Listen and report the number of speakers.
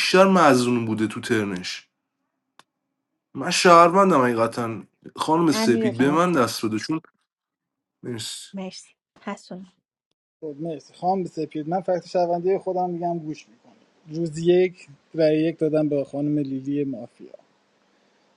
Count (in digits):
3